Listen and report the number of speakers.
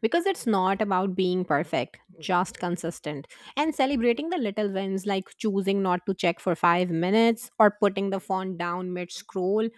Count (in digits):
1